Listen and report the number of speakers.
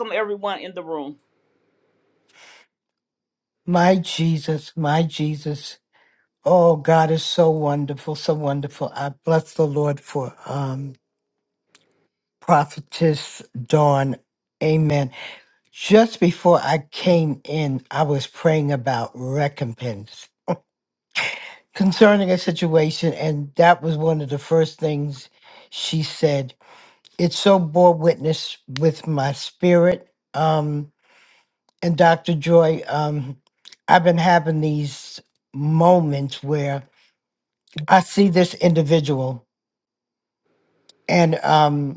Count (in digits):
2